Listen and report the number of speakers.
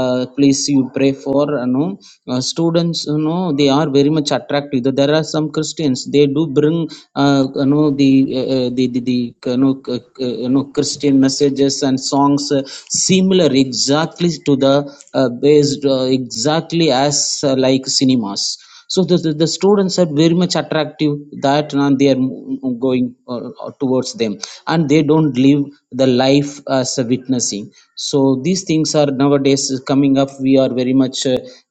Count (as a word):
one